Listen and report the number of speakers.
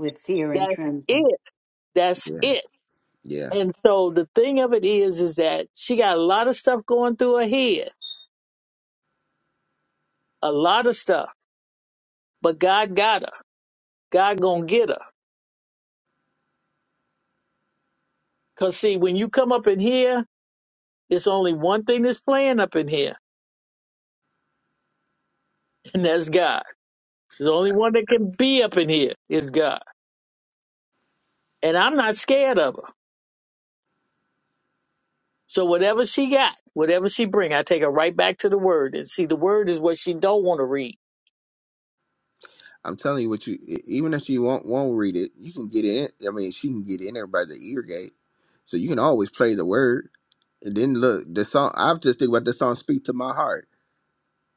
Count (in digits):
3